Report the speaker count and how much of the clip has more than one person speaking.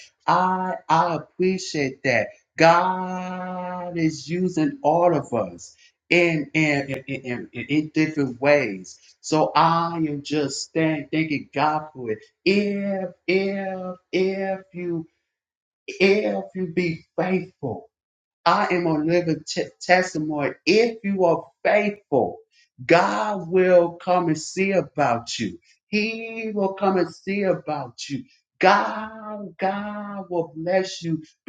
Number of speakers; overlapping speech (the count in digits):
1, no overlap